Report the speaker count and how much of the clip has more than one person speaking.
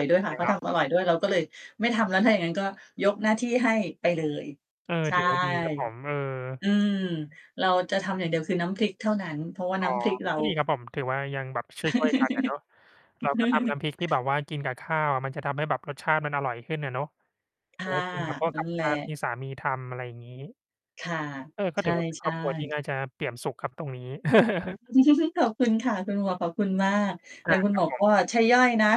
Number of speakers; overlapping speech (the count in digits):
2, about 7%